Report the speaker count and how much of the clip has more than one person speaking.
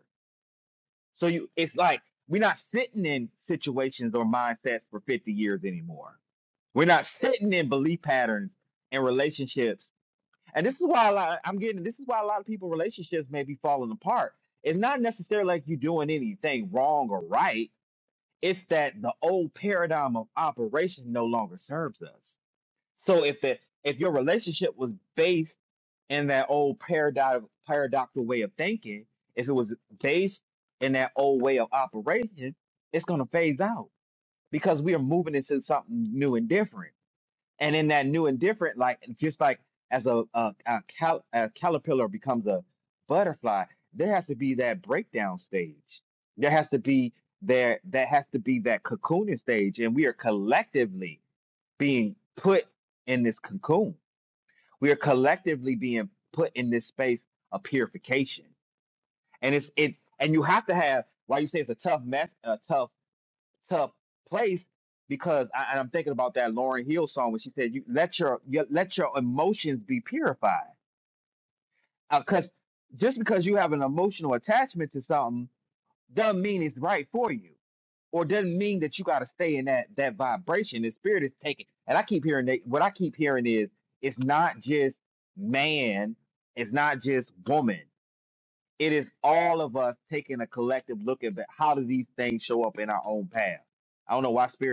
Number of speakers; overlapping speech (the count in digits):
1, no overlap